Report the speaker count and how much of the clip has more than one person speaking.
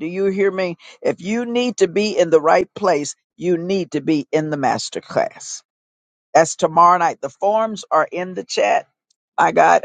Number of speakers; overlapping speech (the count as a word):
one, no overlap